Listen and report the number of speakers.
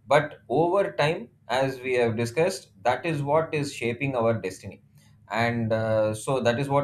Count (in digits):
1